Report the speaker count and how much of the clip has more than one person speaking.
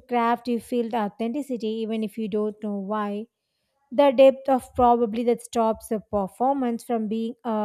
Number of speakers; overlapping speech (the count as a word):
one, no overlap